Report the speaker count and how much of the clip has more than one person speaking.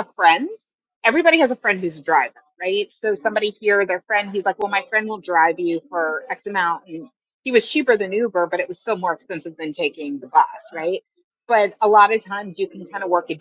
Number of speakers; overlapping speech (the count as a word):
one, no overlap